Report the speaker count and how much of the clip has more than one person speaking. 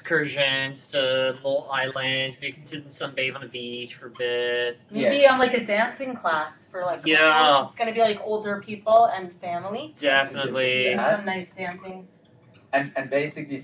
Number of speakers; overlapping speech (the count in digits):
3, about 19%